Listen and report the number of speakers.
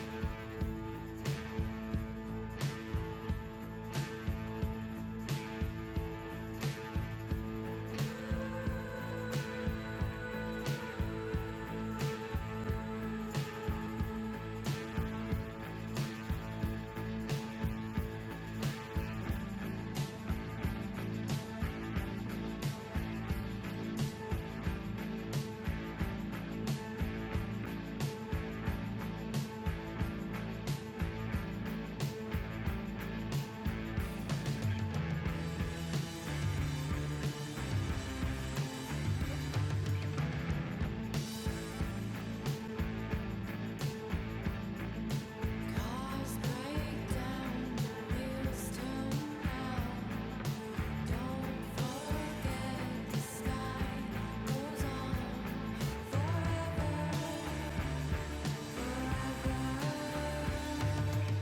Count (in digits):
0